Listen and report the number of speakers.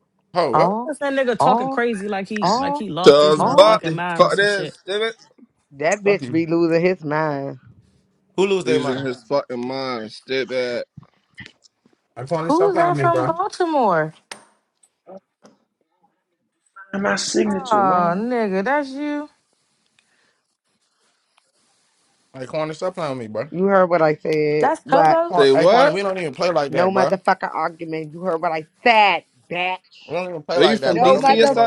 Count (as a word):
six